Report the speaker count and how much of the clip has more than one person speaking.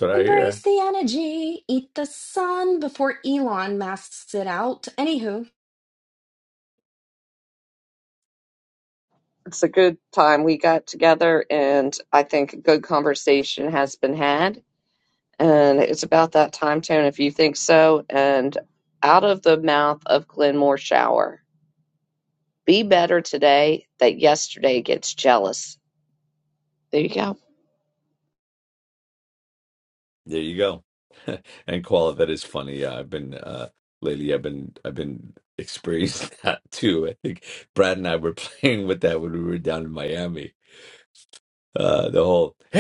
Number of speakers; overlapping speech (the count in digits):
3, about 1%